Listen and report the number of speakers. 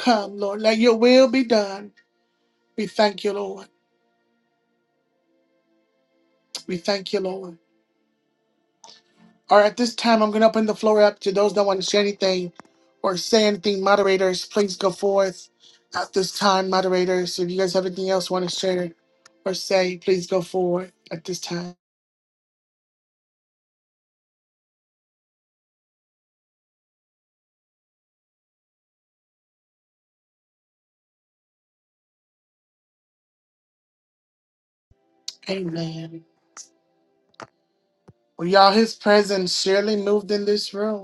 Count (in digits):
1